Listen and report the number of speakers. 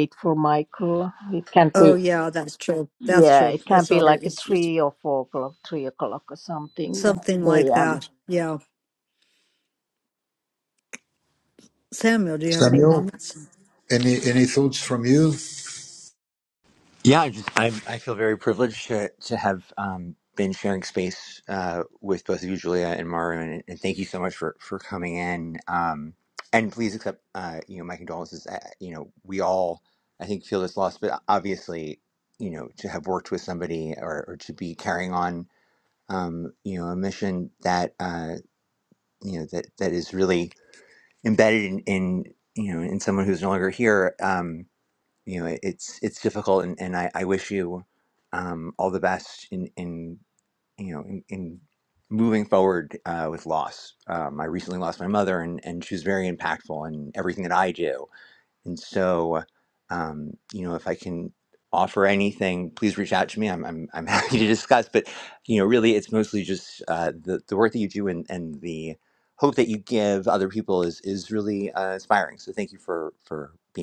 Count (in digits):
4